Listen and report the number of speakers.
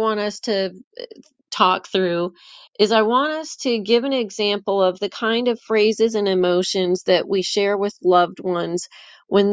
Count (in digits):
1